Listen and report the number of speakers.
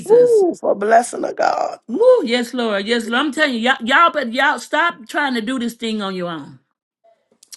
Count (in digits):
2